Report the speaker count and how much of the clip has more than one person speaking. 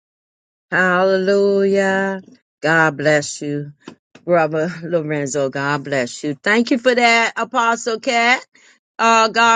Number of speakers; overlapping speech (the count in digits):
1, no overlap